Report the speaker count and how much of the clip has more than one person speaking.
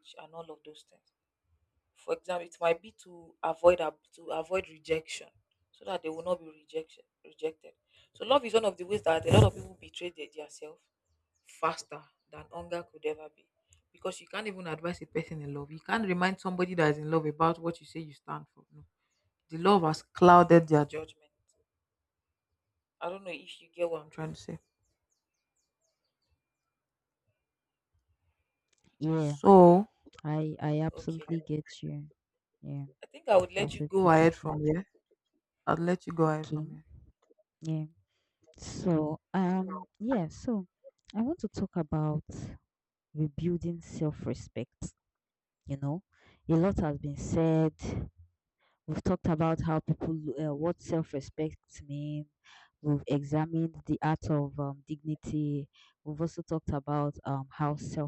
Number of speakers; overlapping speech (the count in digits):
2, about 3%